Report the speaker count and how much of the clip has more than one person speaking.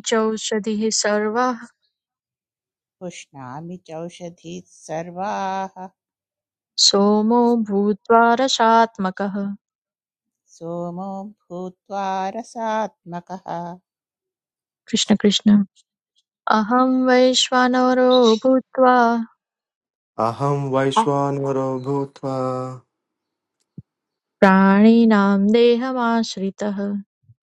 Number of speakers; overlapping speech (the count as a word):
three, no overlap